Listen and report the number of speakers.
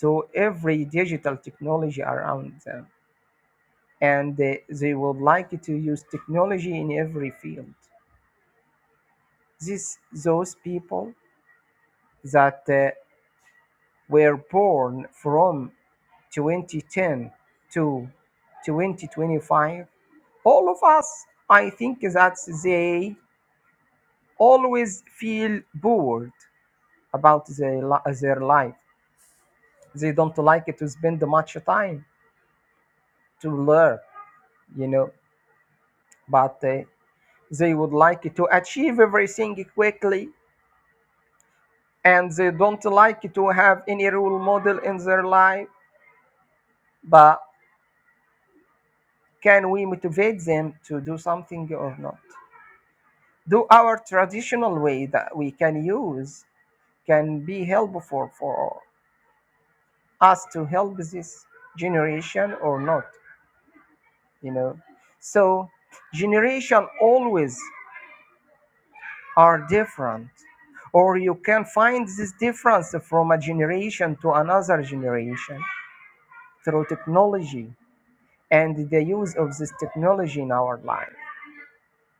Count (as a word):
one